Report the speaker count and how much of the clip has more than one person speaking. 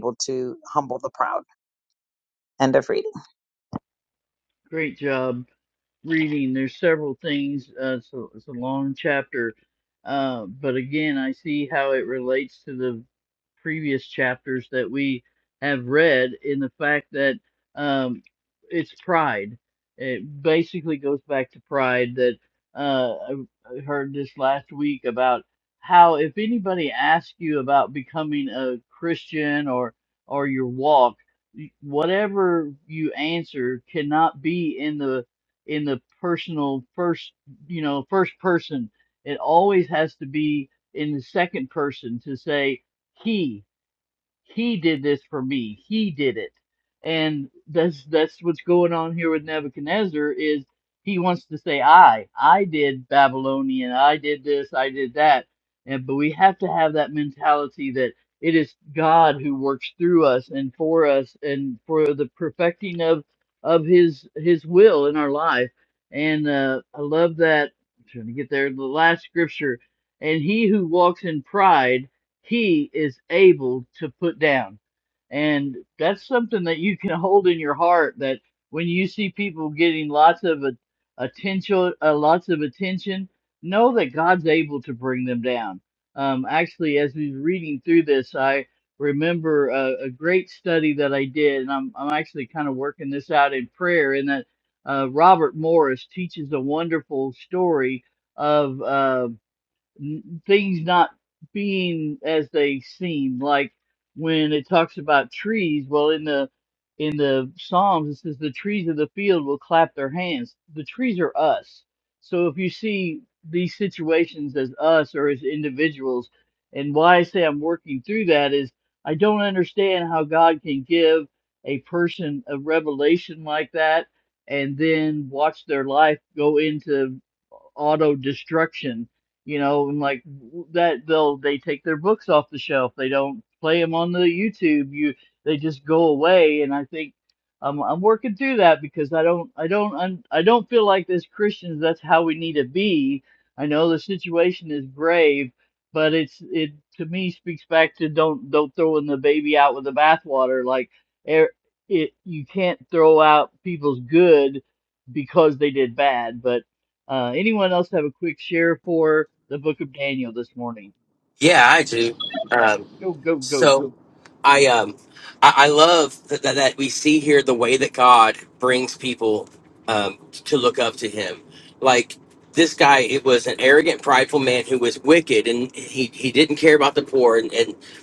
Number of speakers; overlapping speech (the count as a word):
three, under 1%